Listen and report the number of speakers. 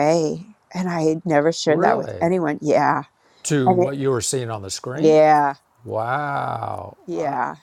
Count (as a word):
two